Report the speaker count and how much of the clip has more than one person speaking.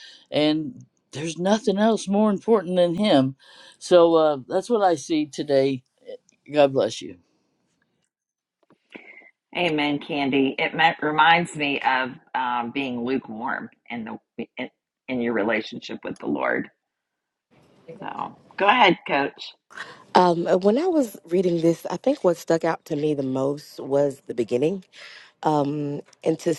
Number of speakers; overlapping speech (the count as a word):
three, no overlap